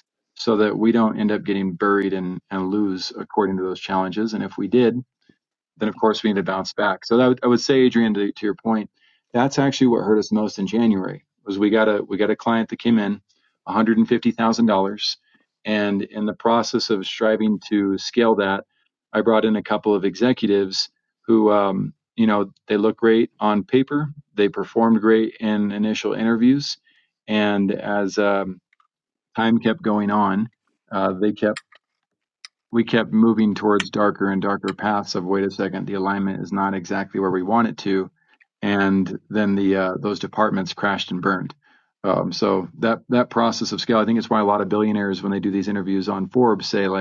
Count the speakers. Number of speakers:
one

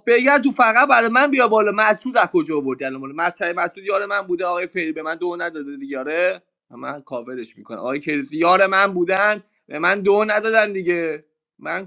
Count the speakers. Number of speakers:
one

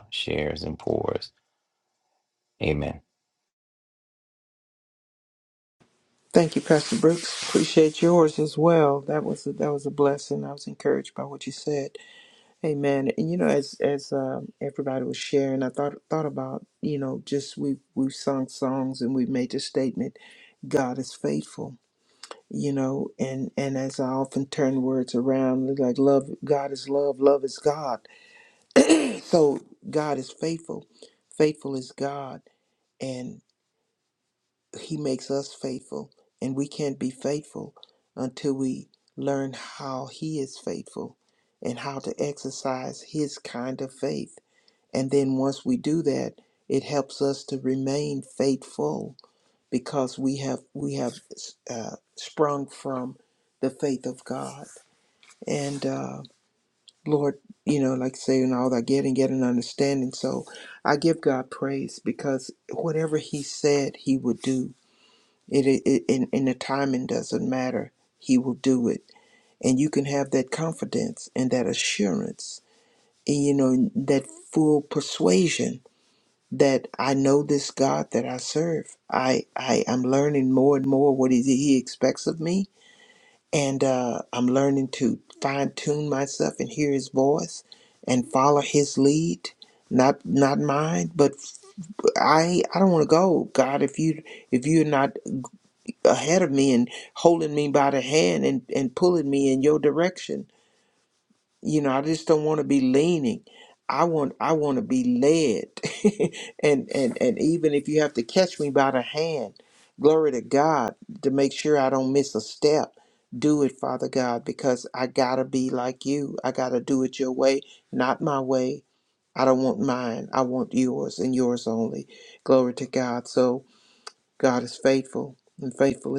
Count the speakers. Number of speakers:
two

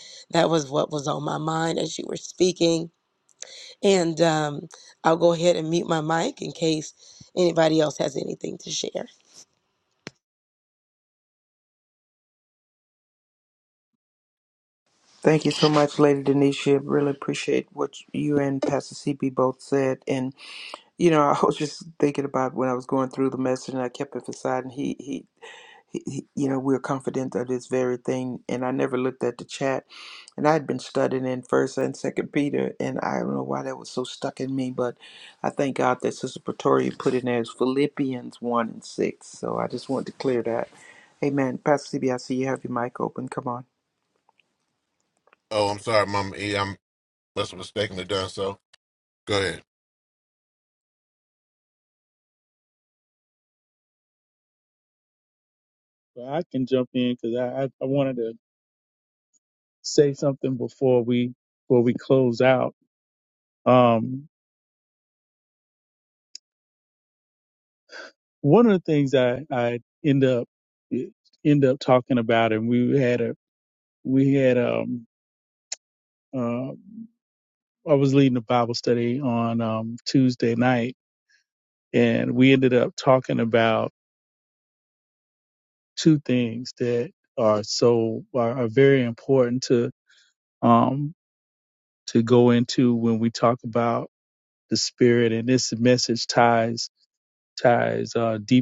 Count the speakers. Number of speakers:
four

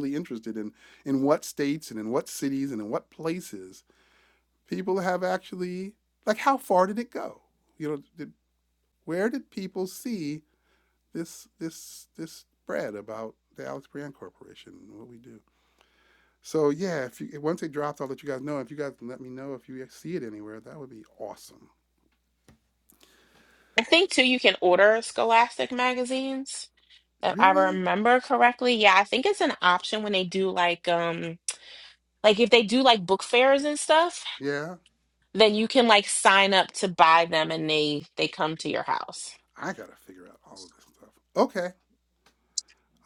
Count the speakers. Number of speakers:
two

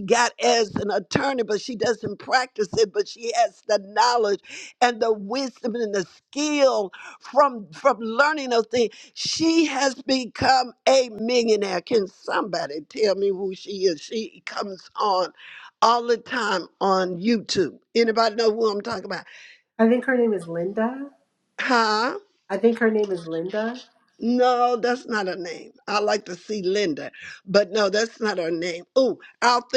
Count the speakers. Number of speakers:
two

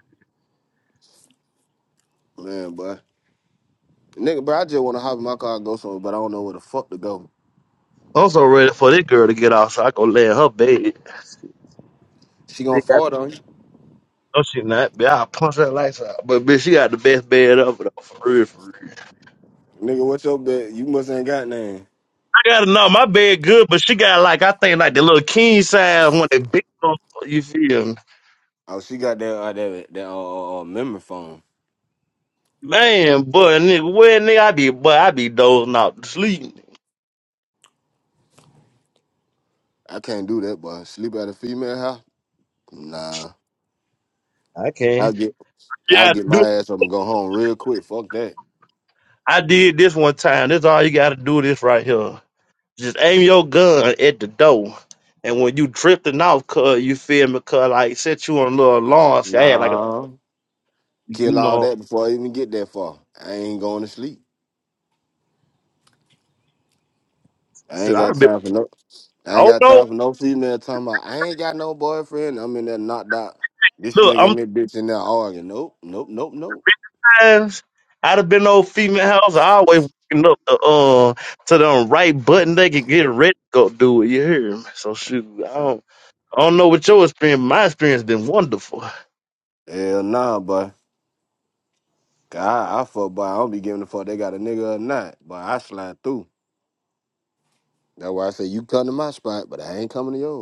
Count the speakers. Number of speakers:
two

